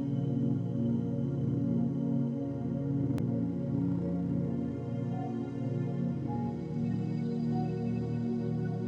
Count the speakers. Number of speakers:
0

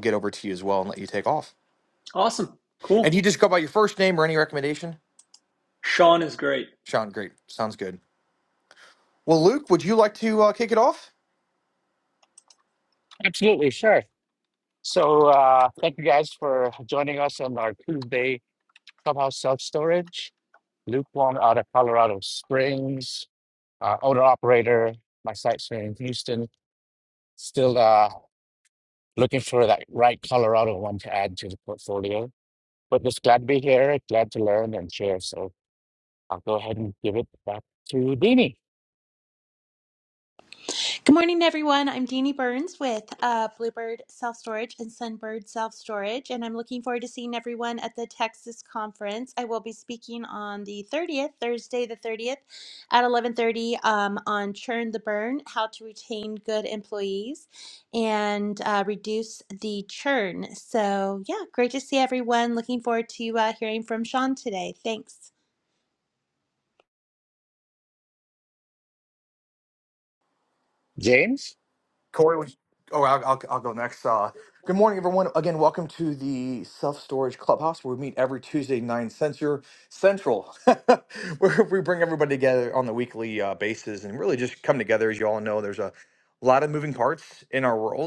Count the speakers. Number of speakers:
4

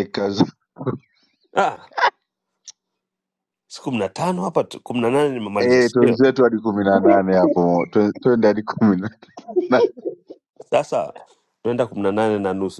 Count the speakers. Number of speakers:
2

